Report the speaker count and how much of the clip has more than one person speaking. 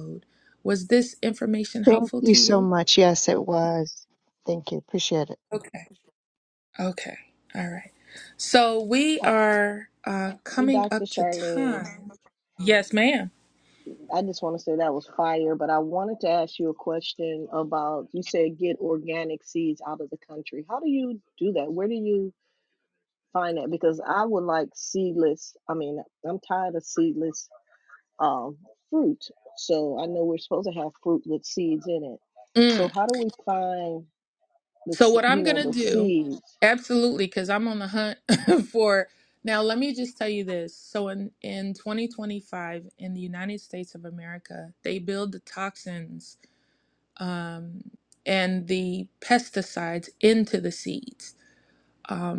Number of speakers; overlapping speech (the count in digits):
3, about 7%